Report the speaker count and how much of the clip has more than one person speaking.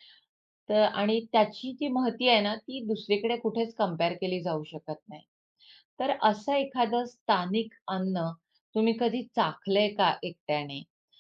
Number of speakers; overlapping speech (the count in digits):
1, no overlap